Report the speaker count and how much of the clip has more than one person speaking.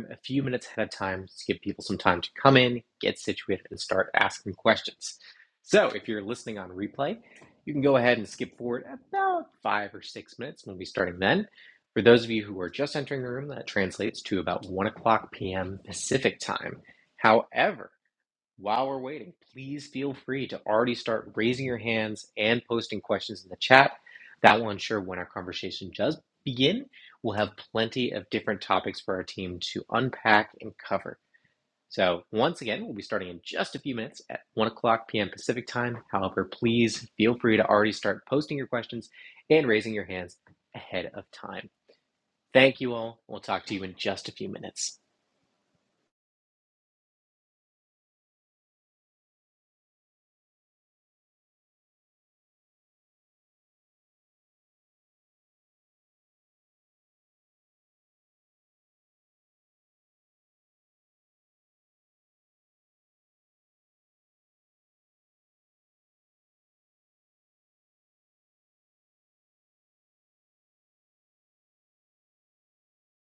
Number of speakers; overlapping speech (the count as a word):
one, no overlap